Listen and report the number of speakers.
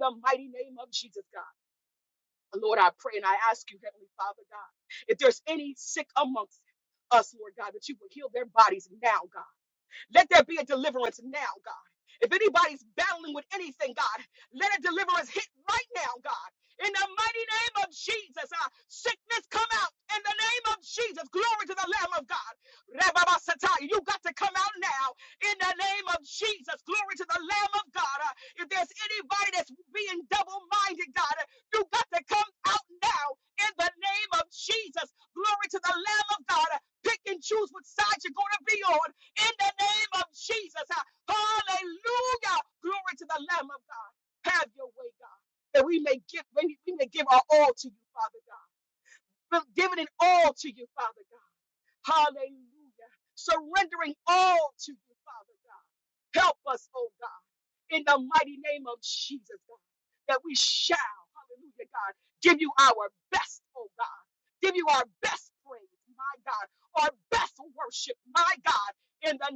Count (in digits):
1